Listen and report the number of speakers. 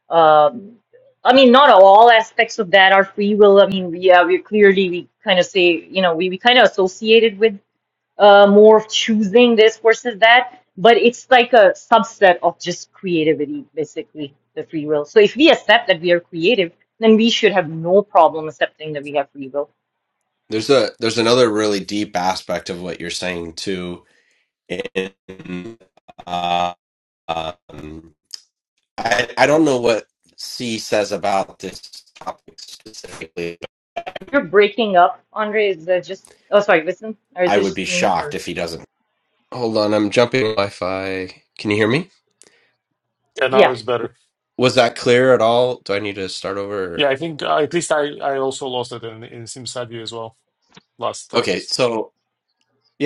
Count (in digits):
3